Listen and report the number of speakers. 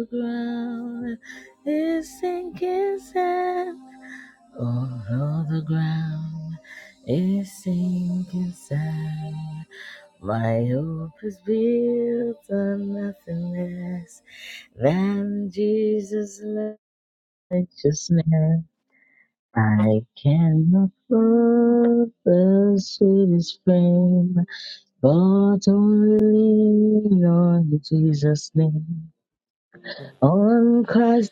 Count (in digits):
1